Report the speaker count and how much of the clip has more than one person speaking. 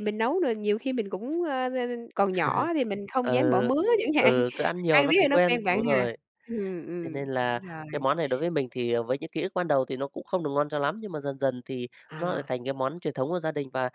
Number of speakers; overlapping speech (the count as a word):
two, about 20%